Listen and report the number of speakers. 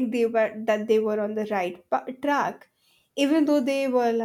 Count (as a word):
one